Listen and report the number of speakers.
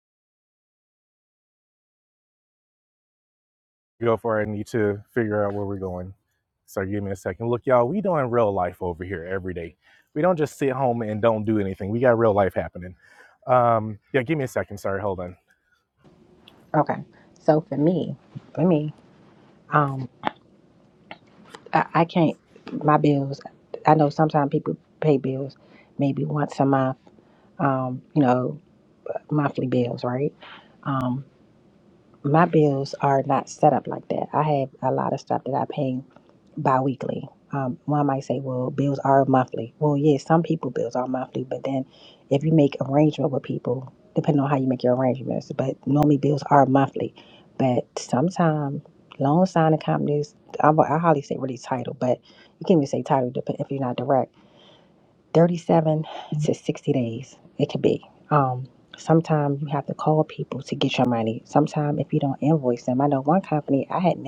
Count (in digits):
2